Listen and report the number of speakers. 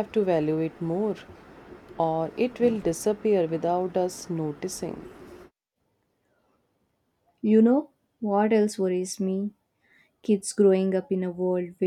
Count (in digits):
2